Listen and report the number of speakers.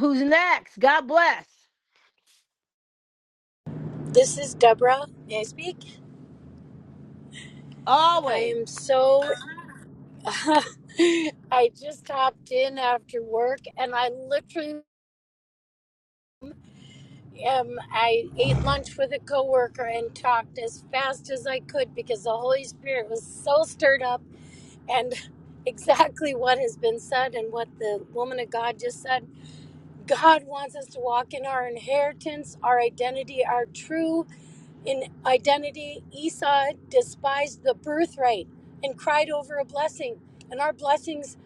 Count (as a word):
two